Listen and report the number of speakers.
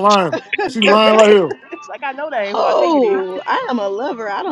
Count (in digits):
3